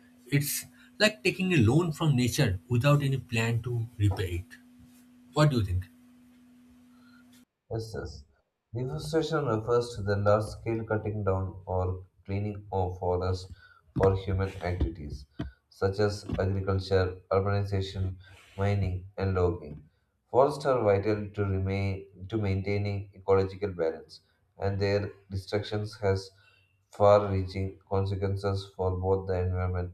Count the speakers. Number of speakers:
2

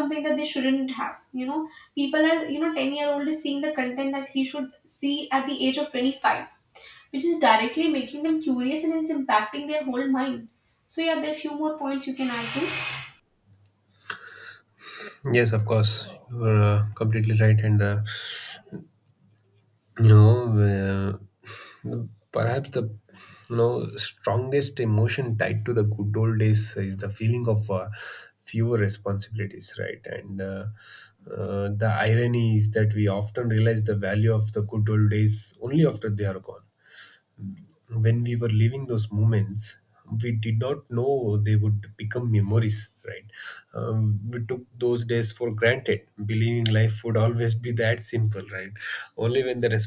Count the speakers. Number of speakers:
2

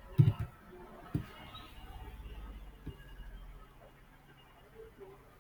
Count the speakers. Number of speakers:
0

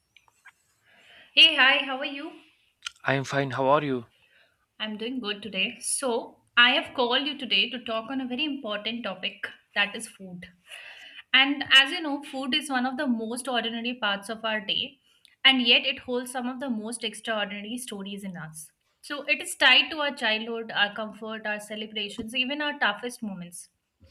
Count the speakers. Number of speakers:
2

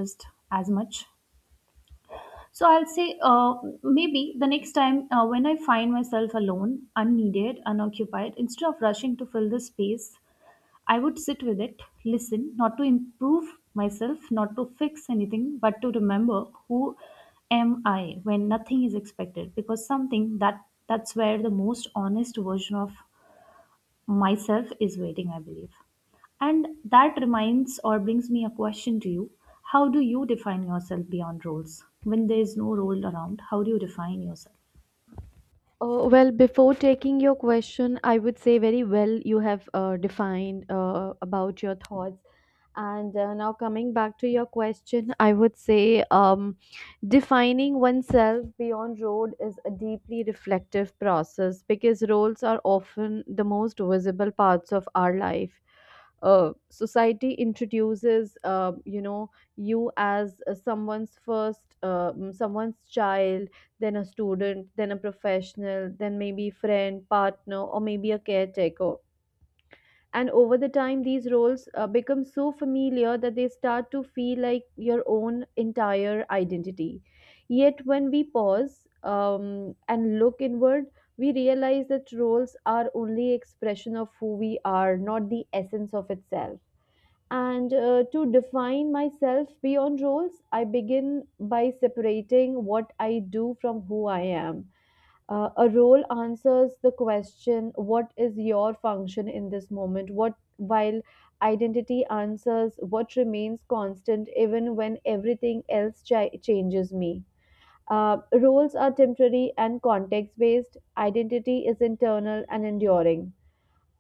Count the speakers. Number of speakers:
2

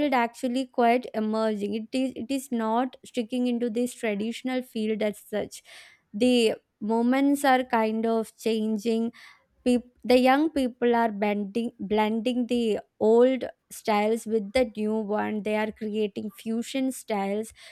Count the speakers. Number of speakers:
1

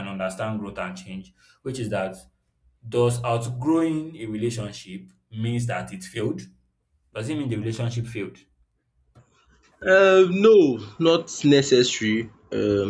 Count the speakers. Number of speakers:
2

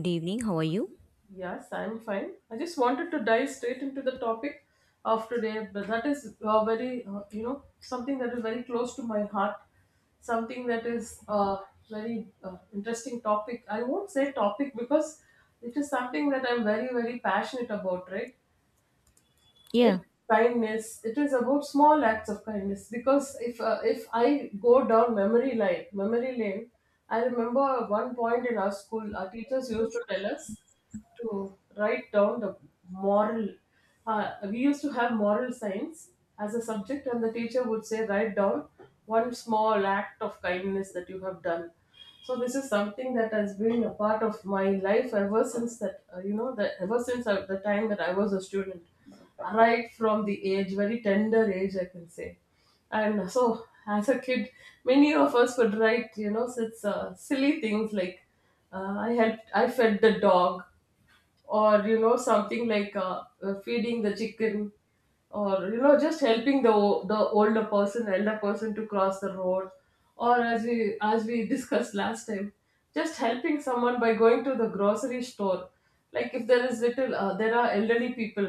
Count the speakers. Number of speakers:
2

